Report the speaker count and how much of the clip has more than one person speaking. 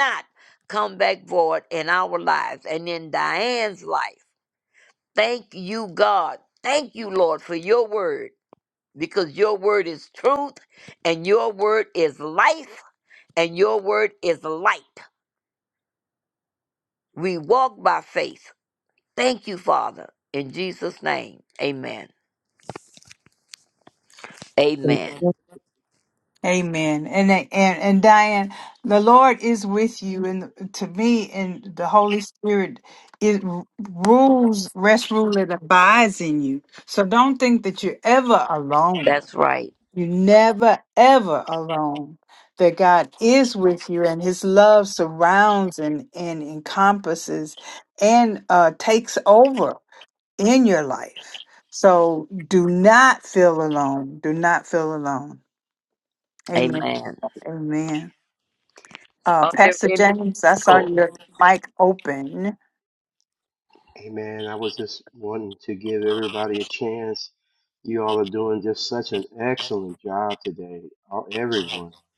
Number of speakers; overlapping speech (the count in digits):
3, about 2%